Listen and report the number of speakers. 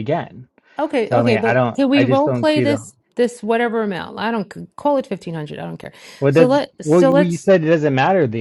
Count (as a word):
two